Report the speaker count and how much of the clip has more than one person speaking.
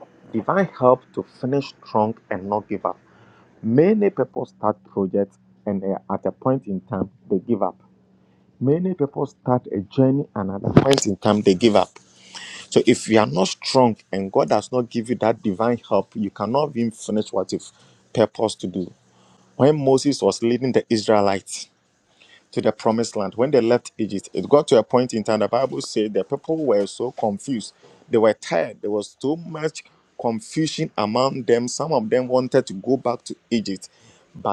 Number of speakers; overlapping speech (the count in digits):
1, no overlap